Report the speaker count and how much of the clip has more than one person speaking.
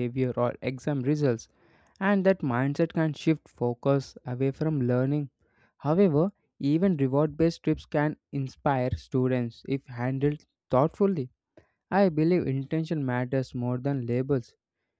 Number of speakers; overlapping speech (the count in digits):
1, no overlap